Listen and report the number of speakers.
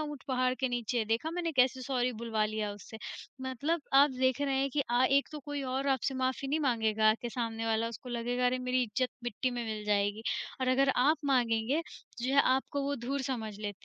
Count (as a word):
one